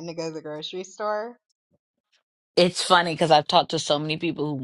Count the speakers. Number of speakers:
two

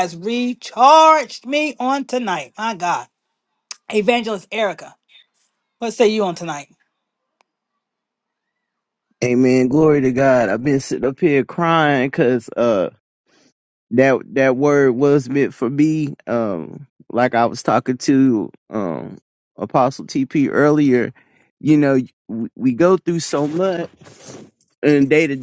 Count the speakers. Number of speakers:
two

